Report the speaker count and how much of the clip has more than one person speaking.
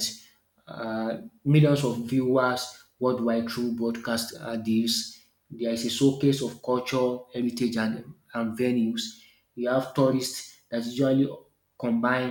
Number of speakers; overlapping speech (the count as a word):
one, no overlap